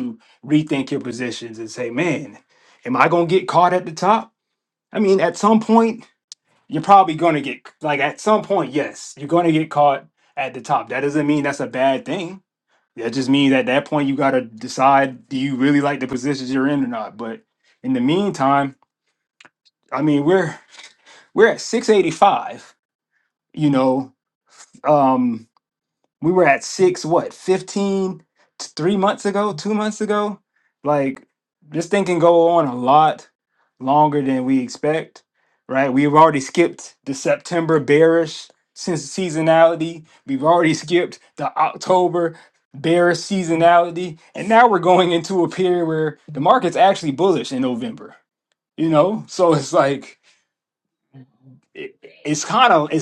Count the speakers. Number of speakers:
one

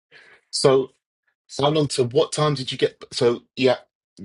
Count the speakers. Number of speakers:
one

